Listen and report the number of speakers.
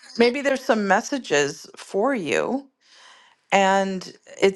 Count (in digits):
1